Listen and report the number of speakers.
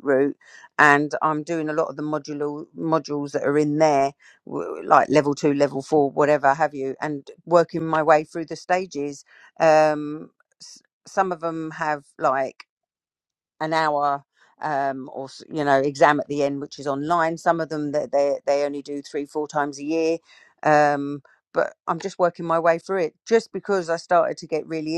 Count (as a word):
one